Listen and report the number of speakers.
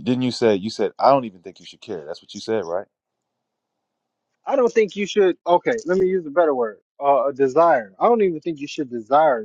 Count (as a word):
two